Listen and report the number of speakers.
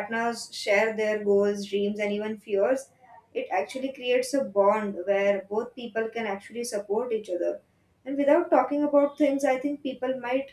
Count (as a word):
one